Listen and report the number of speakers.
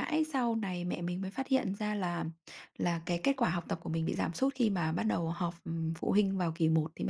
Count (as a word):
one